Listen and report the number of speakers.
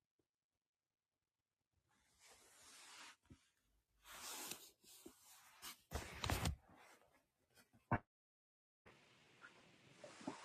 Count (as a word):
zero